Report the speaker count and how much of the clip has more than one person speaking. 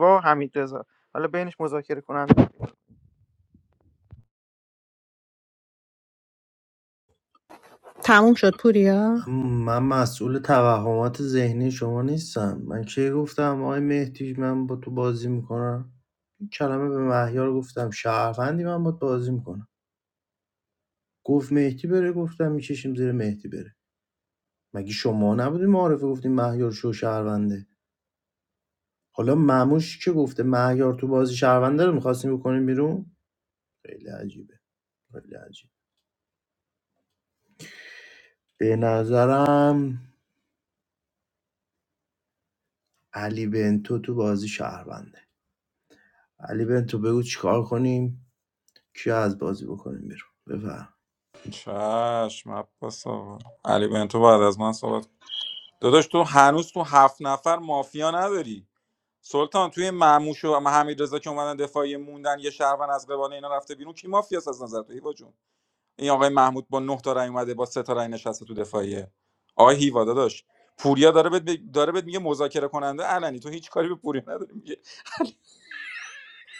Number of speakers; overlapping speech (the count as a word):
four, under 1%